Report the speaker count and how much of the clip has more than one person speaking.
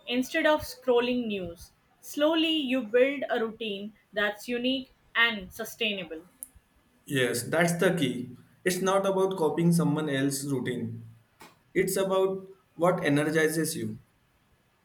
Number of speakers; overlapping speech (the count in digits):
2, no overlap